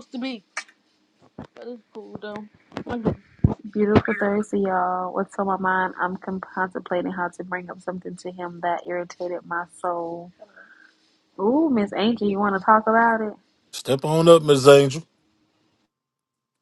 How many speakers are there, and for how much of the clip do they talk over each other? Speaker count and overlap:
3, no overlap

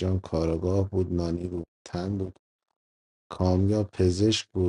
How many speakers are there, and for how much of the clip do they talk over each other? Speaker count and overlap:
1, no overlap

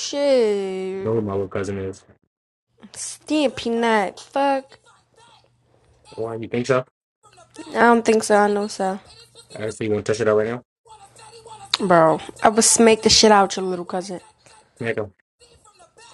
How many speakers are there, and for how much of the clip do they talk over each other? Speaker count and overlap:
2, no overlap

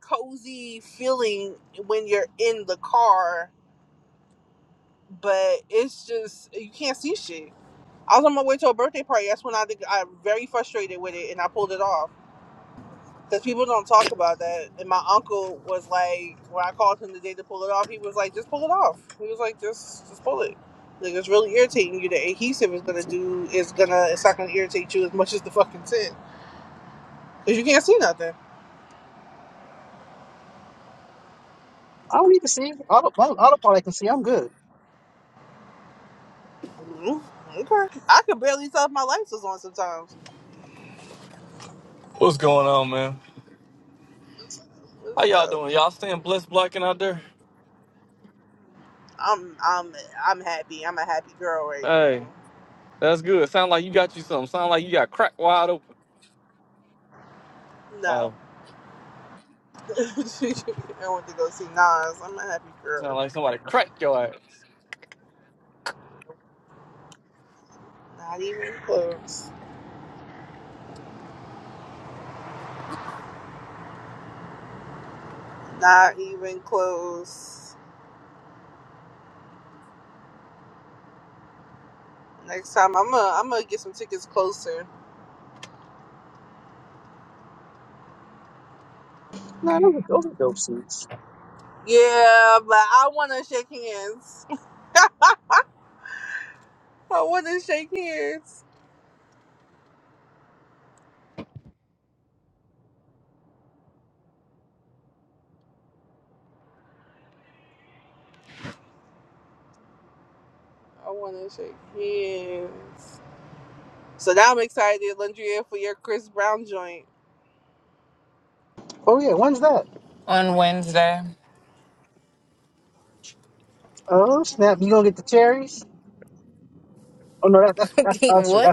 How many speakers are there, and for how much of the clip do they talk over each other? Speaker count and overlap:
4, about 1%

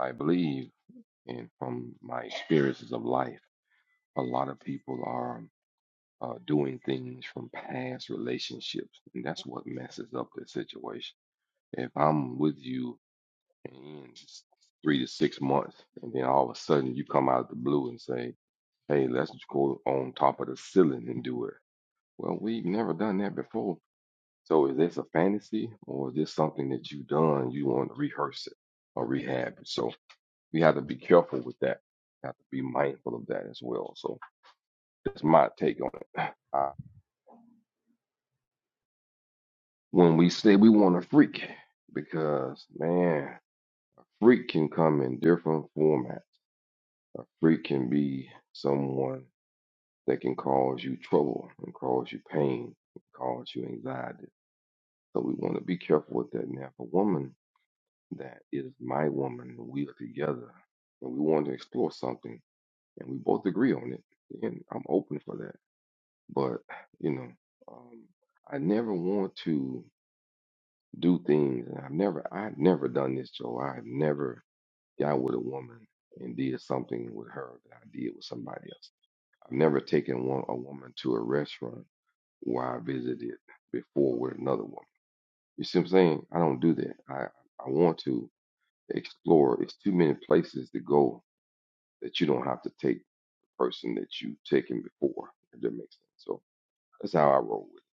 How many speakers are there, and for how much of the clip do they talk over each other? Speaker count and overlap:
1, no overlap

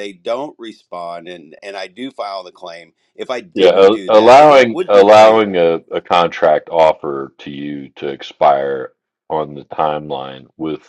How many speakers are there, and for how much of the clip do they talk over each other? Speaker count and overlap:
2, about 18%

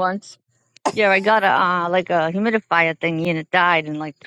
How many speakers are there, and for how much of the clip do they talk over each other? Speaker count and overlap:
1, no overlap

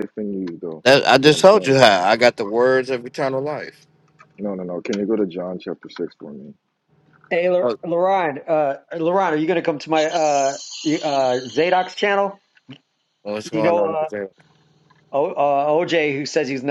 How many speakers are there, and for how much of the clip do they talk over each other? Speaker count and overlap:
3, about 9%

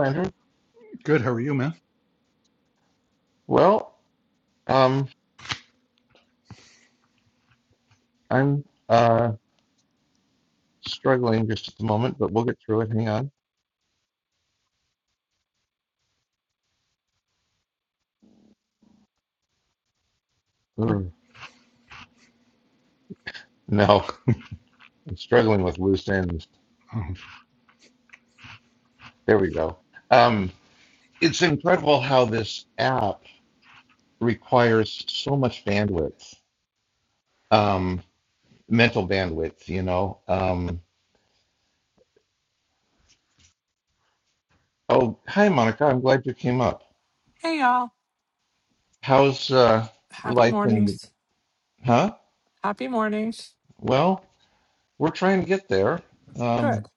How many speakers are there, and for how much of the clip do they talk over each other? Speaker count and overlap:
3, about 2%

